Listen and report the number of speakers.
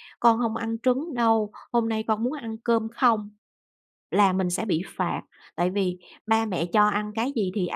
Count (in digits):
1